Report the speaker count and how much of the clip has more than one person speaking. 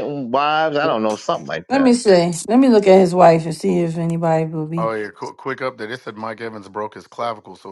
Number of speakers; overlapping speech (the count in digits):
3, about 4%